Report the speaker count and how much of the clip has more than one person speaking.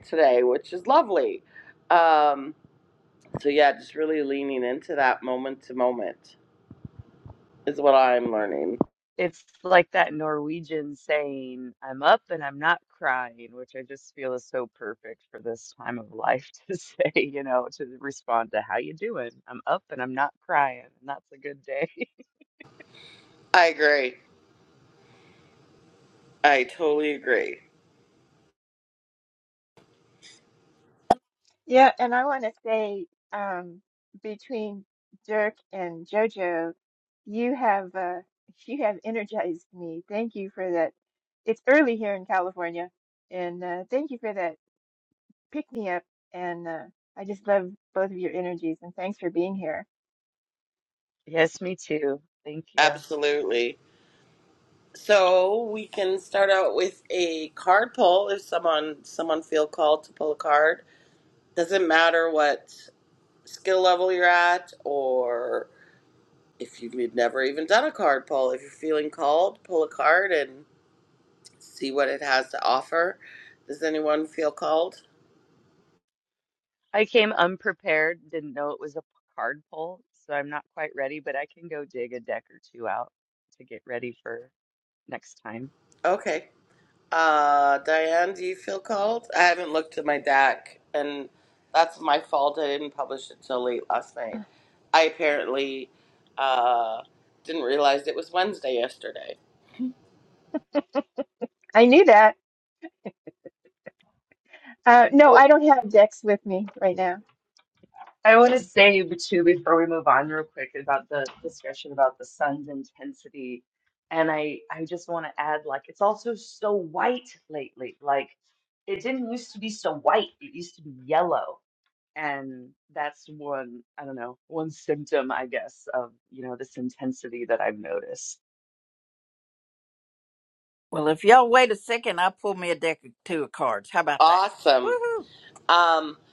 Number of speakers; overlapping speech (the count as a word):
four, under 1%